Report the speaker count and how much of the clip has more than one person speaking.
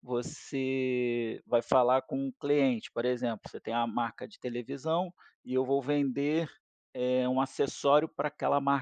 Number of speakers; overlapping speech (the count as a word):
one, no overlap